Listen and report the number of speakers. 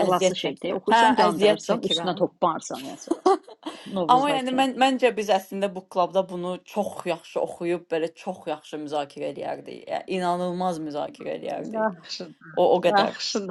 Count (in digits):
3